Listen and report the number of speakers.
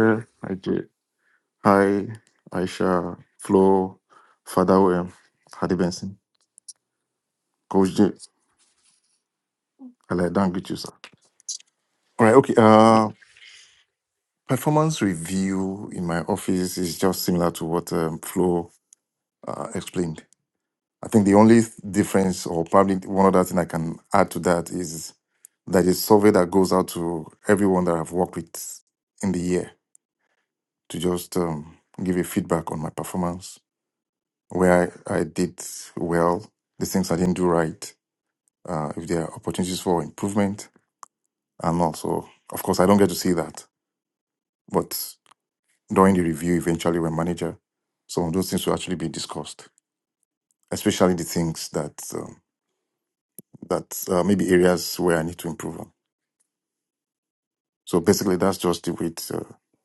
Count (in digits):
1